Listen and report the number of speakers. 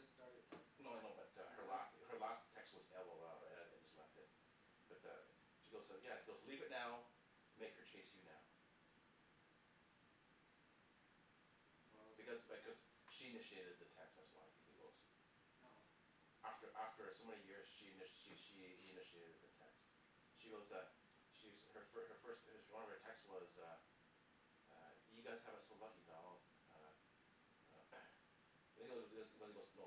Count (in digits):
2